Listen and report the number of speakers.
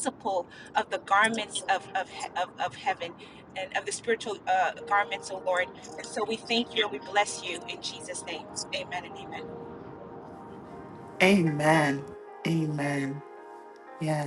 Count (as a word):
two